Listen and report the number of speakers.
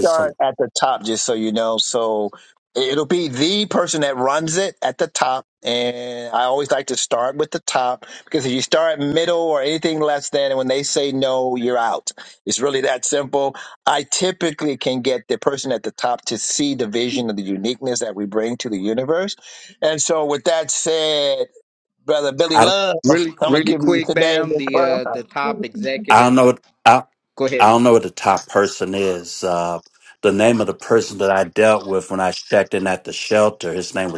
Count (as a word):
three